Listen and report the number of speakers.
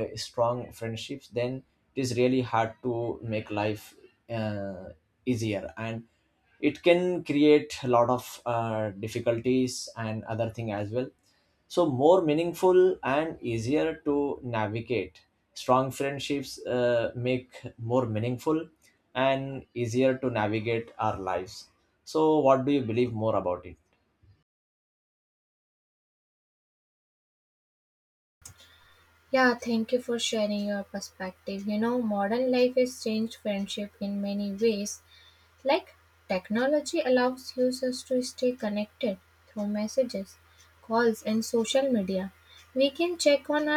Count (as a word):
two